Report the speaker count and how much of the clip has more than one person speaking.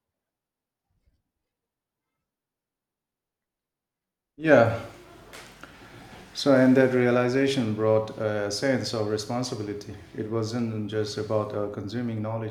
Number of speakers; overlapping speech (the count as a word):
one, no overlap